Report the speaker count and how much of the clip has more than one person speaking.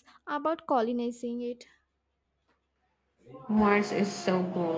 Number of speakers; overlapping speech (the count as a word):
two, no overlap